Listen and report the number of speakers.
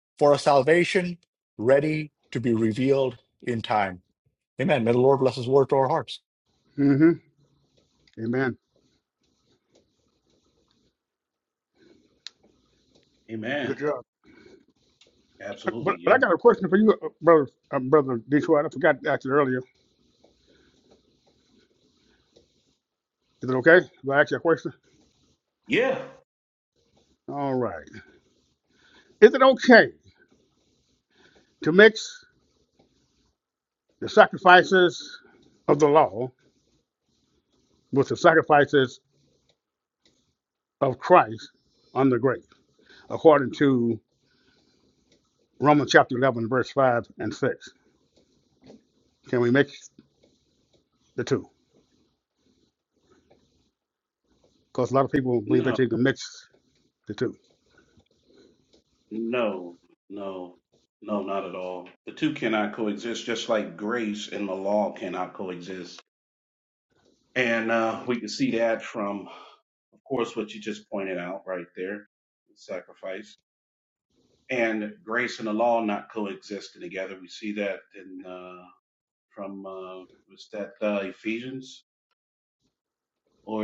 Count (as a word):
three